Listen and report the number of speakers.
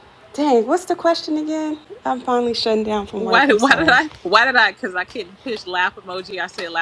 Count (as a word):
two